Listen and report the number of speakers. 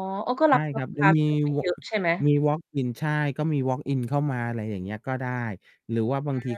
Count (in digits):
2